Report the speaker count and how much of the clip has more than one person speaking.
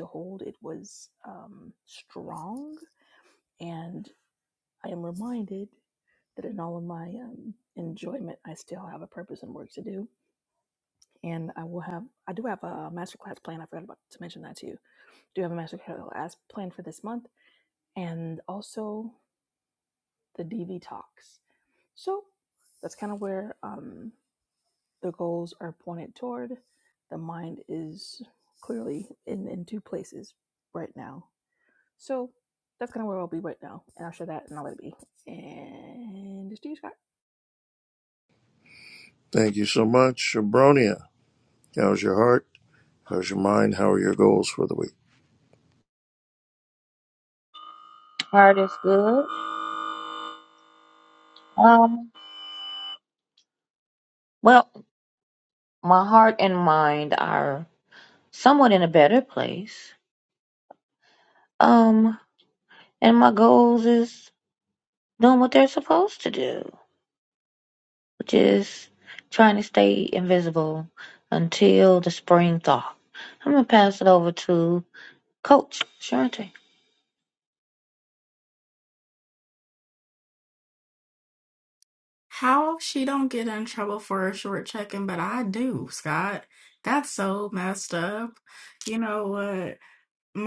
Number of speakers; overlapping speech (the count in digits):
4, no overlap